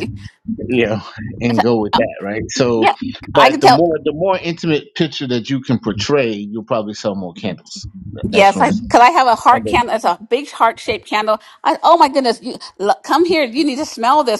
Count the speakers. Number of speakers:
2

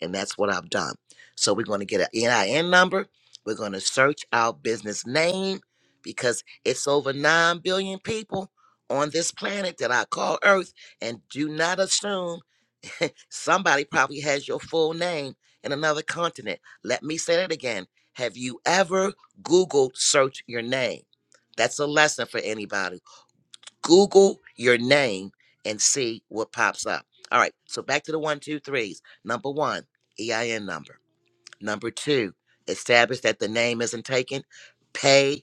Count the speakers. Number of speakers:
1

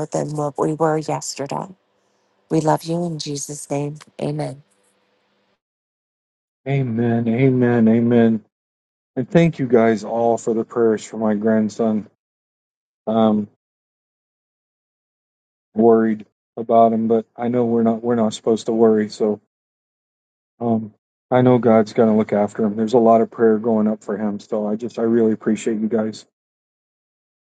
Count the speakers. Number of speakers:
2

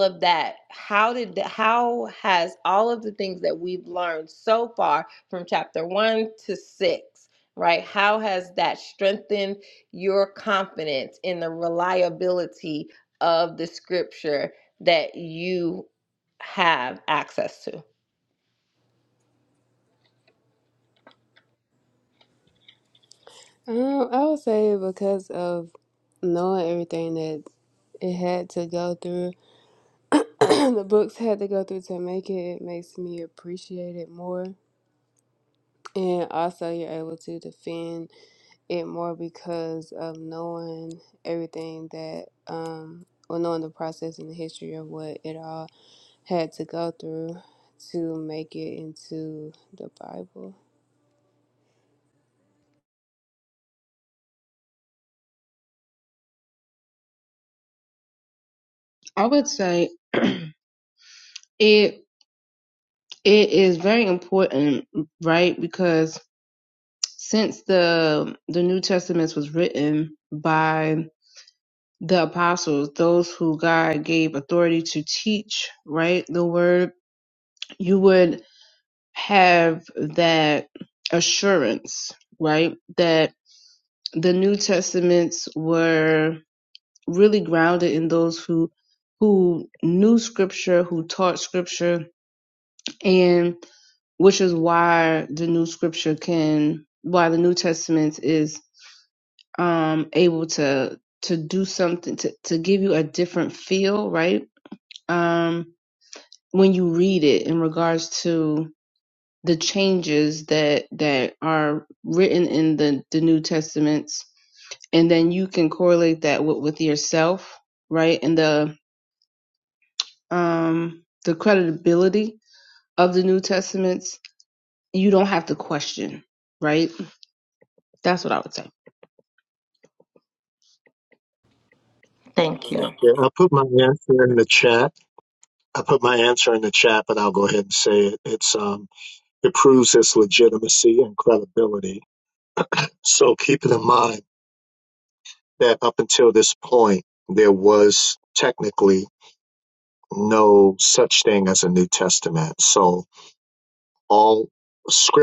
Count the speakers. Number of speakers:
4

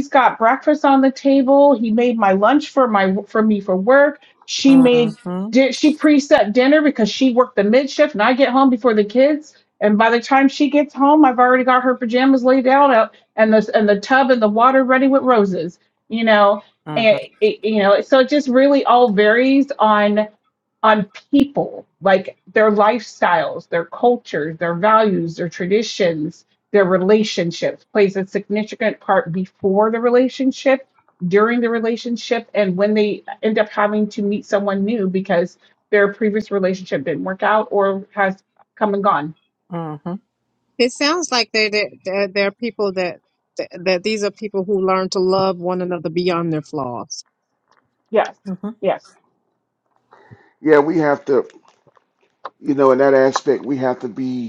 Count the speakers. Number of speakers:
4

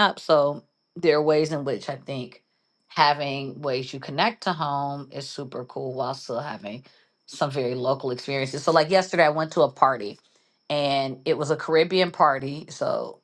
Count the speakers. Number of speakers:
1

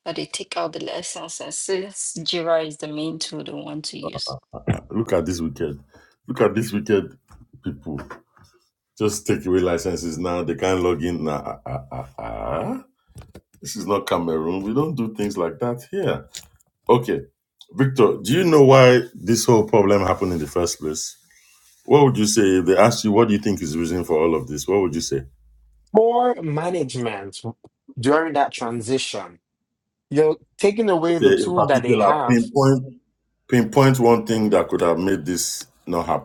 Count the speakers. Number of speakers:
3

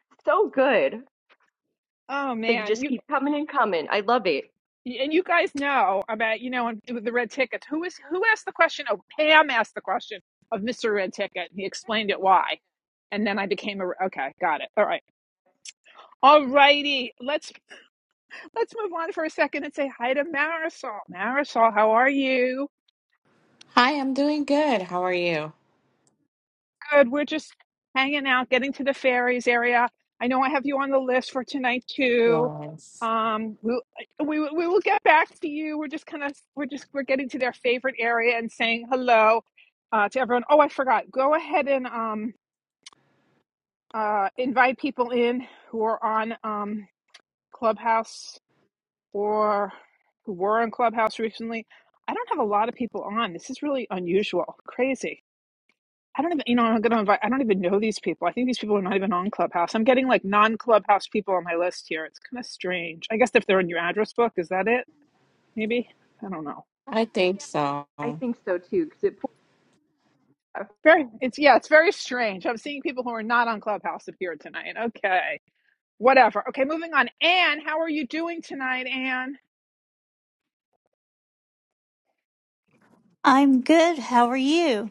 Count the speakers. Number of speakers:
4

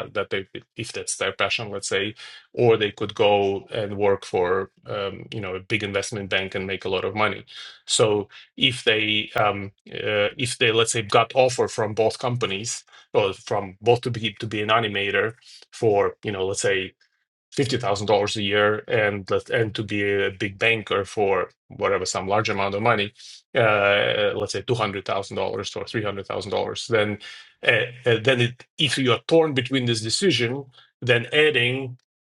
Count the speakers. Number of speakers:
1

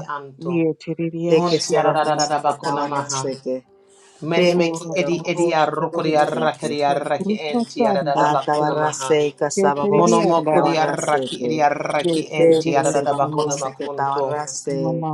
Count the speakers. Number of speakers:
3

